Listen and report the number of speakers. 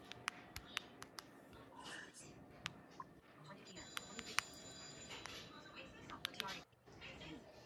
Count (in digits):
0